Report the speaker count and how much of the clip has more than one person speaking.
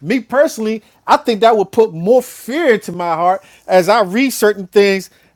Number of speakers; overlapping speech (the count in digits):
1, no overlap